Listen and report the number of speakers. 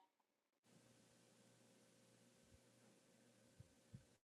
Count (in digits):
0